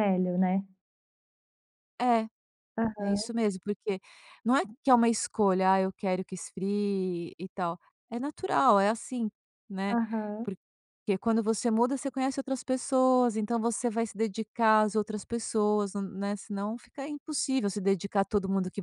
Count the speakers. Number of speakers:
2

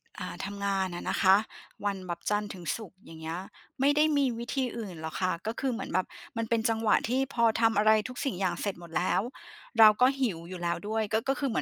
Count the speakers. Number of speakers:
1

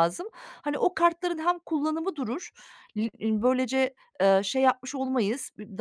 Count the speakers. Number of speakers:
1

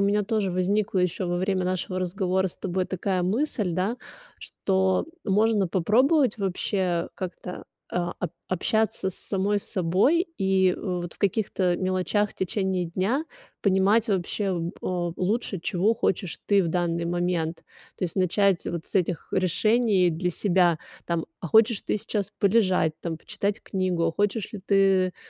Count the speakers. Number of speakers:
1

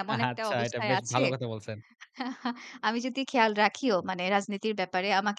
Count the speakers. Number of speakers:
2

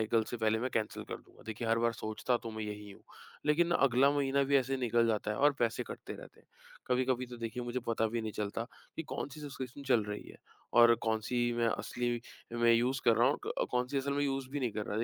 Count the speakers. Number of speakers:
1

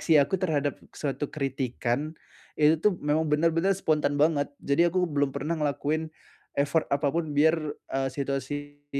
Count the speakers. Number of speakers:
1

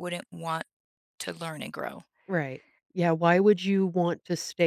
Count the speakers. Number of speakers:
2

